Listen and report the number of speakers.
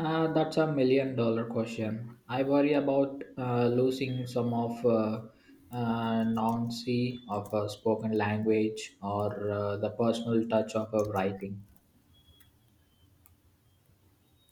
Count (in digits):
1